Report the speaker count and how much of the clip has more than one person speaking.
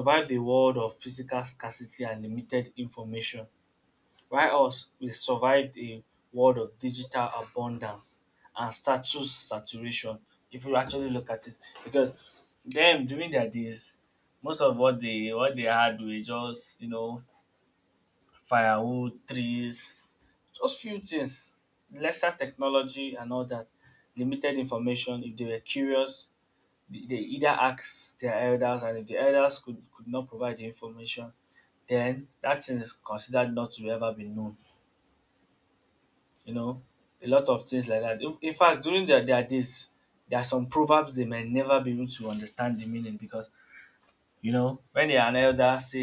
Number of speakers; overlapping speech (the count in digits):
1, no overlap